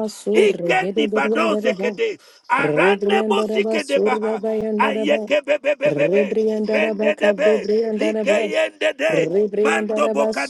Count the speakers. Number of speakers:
2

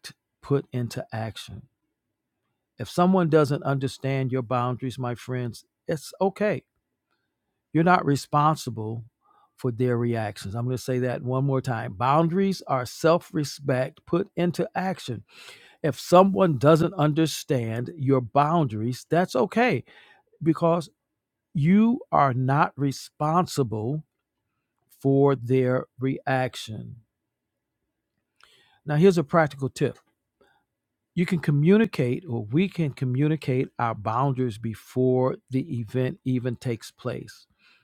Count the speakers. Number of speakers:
1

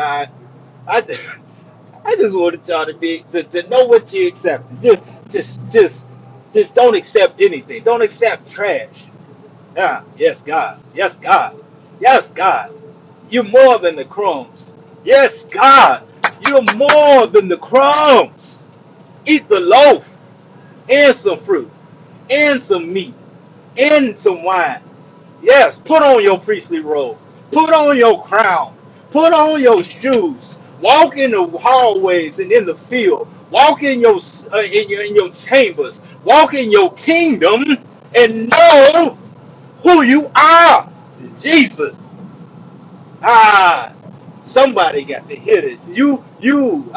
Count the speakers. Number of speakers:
1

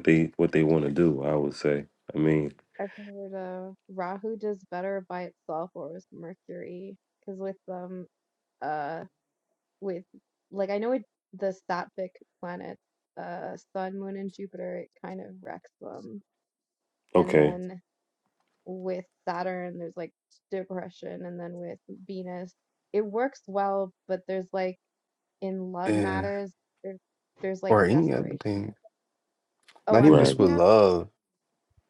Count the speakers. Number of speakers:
3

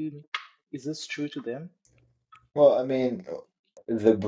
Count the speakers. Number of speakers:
2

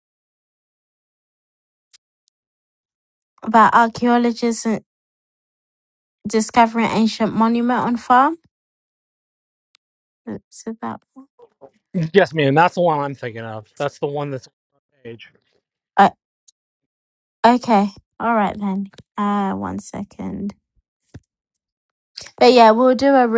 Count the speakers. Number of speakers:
2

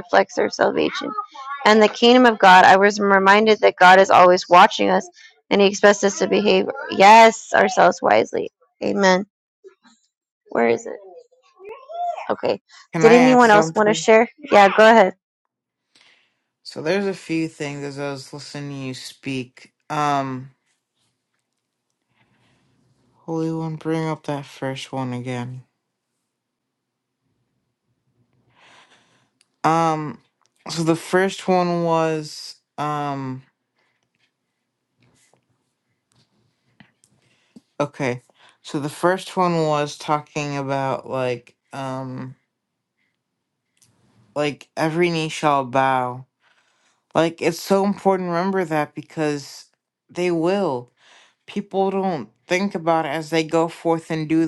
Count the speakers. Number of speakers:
2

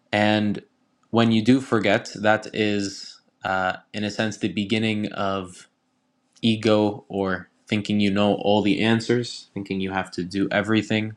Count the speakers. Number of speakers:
1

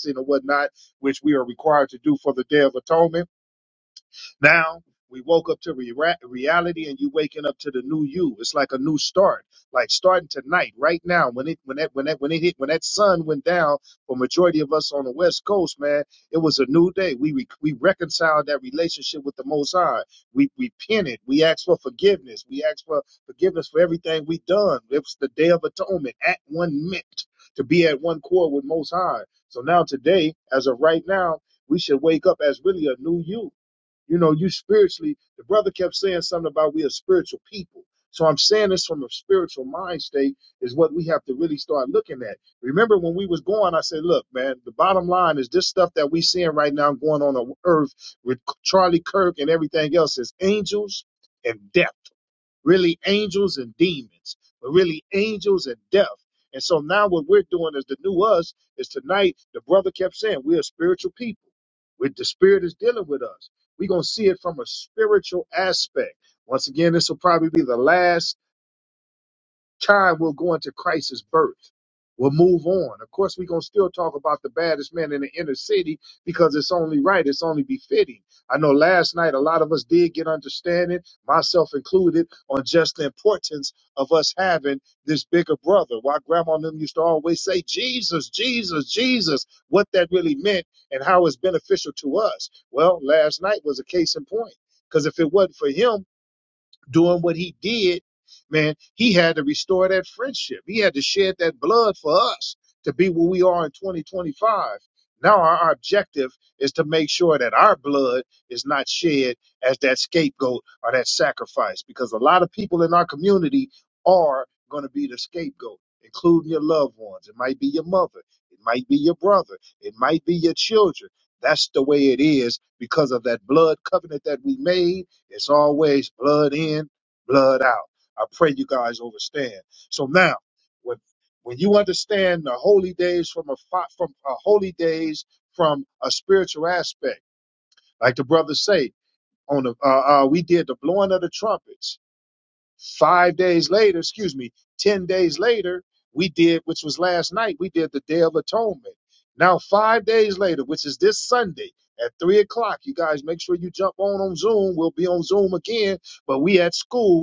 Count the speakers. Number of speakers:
1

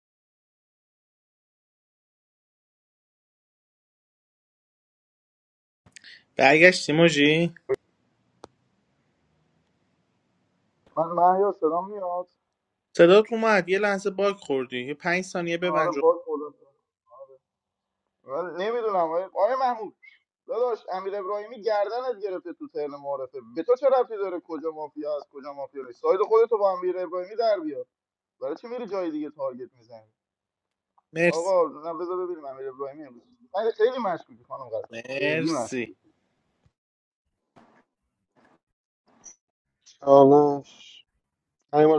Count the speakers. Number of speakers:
3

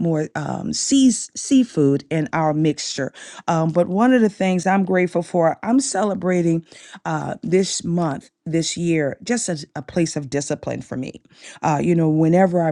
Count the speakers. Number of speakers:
1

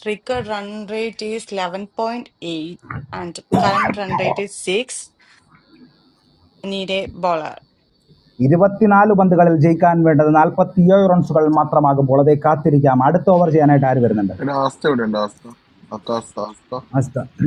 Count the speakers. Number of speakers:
3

